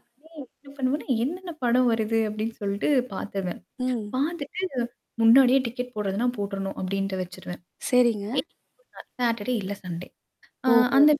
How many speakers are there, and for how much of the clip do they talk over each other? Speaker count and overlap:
2, about 3%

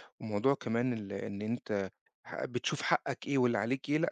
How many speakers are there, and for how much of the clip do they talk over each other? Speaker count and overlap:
1, no overlap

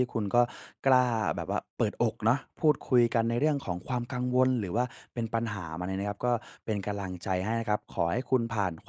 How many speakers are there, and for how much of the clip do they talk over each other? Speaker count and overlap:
1, no overlap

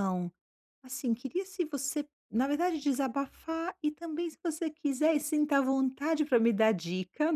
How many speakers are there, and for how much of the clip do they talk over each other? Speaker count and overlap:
1, no overlap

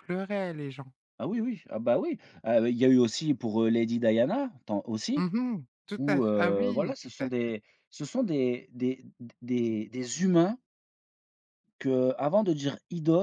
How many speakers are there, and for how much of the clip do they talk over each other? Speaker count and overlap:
2, about 12%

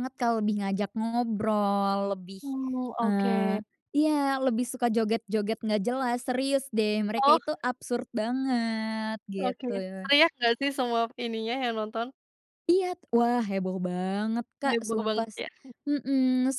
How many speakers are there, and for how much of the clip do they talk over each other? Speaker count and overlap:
2, about 11%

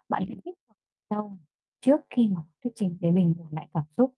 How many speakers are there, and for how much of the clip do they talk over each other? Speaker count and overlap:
1, no overlap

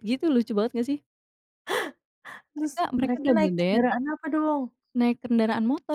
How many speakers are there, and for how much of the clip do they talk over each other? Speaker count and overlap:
2, about 21%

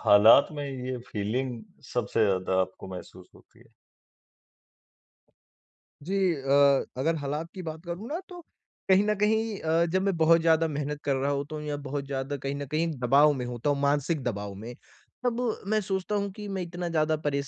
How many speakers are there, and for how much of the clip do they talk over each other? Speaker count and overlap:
2, no overlap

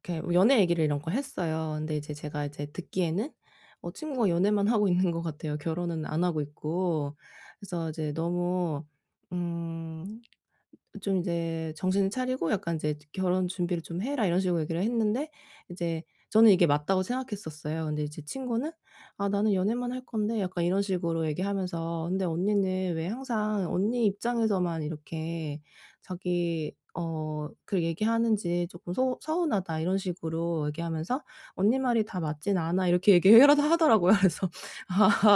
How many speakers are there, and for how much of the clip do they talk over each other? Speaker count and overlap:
1, no overlap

